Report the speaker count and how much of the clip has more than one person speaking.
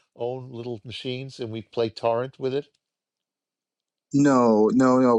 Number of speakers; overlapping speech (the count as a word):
two, no overlap